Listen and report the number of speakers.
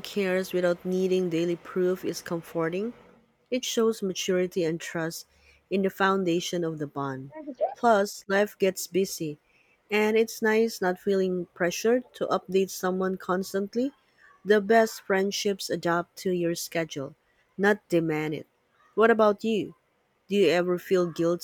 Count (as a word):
one